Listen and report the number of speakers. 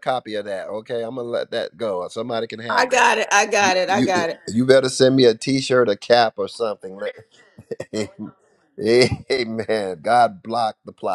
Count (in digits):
2